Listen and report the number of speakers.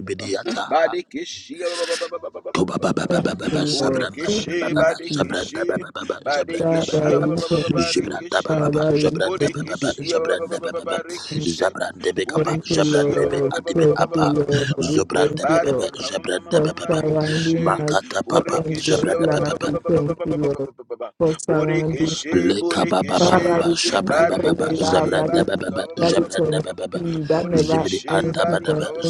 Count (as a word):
three